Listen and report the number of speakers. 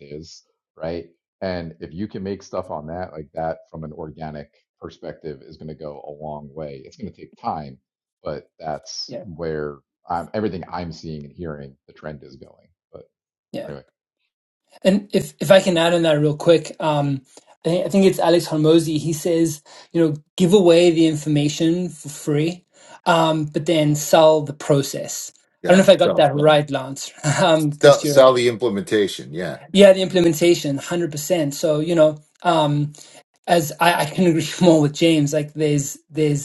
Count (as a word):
three